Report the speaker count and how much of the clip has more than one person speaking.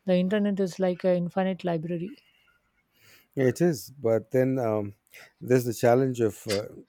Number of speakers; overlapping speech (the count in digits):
2, no overlap